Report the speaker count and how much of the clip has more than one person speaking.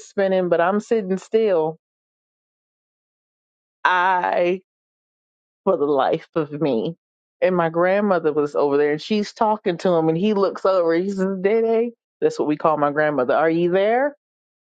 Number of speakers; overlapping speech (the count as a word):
one, no overlap